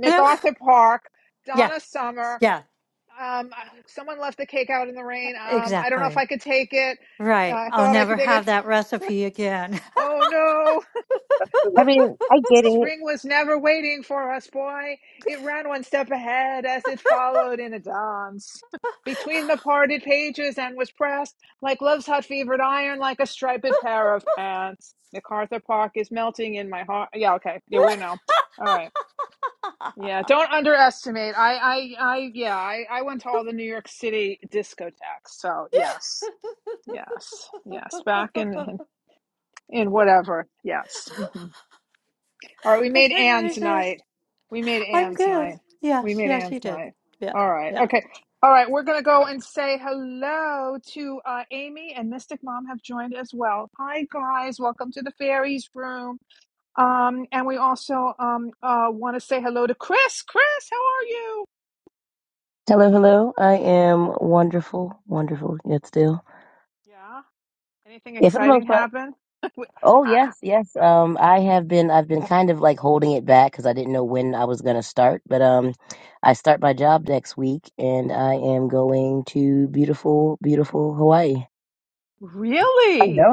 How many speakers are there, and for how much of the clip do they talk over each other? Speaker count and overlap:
4, about 8%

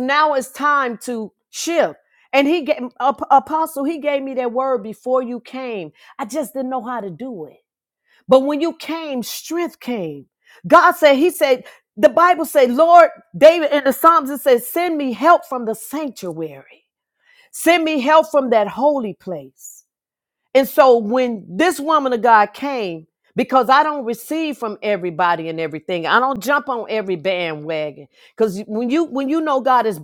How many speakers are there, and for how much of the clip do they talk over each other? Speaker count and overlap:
1, no overlap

